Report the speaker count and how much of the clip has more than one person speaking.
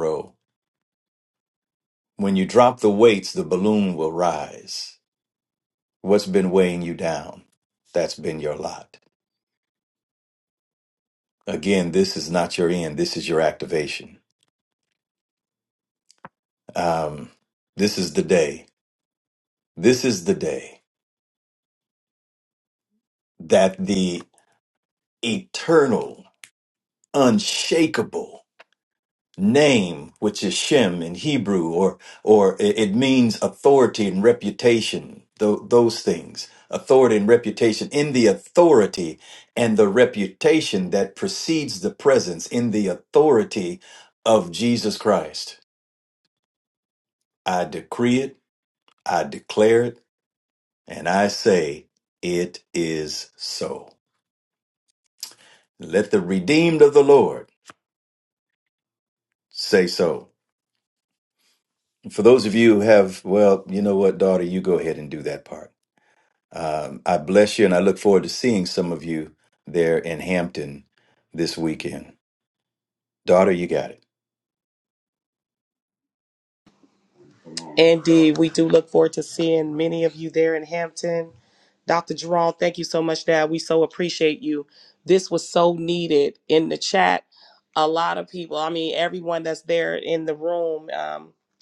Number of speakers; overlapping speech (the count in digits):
2, no overlap